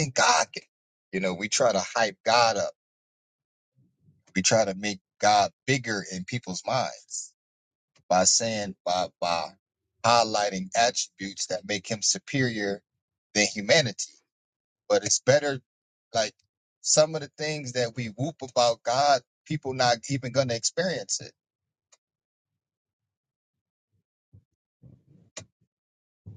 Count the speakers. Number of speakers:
1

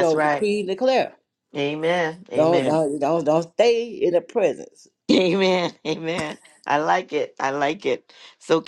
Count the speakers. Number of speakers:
2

